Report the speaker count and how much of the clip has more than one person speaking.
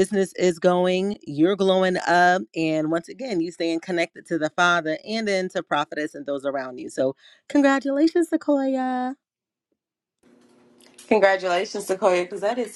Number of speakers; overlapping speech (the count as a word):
two, no overlap